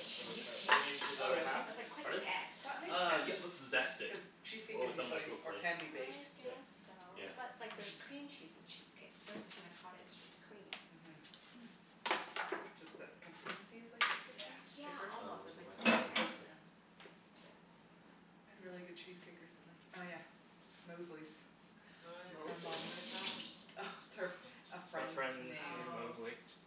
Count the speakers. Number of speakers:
4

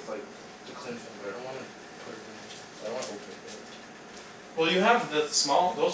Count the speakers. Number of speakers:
2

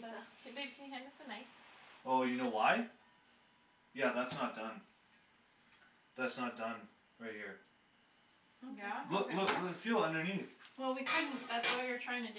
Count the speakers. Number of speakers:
3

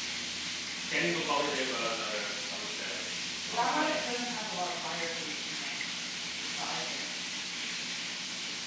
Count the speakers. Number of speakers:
2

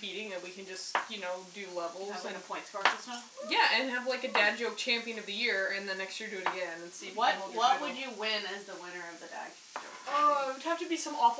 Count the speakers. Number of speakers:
2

